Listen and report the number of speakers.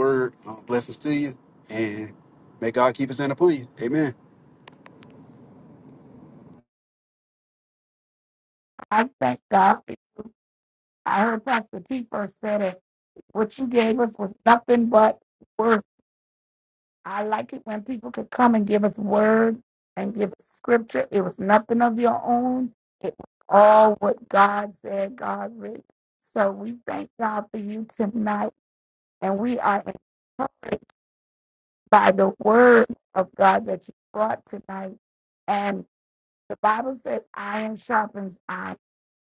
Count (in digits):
2